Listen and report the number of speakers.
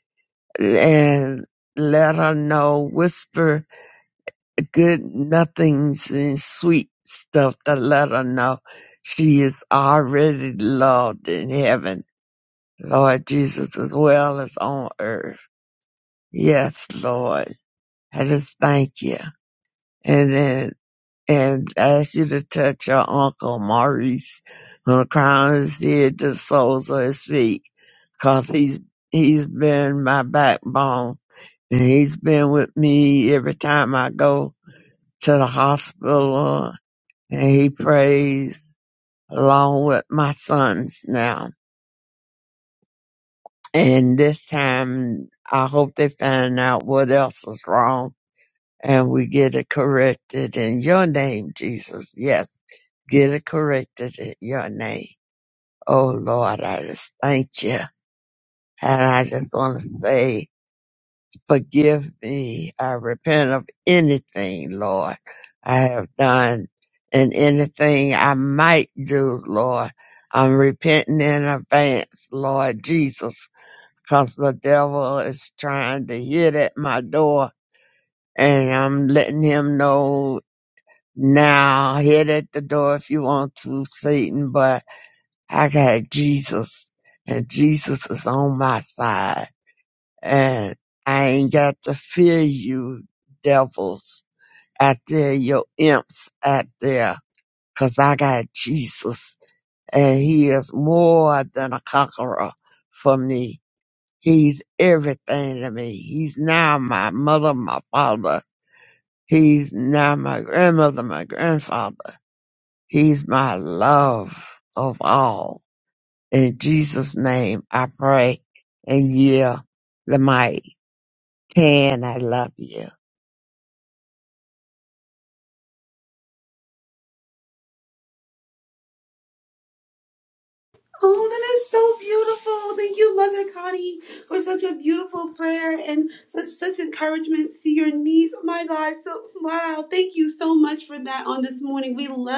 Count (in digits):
2